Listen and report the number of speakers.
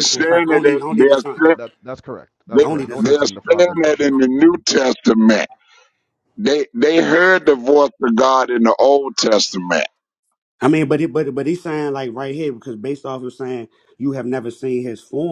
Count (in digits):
3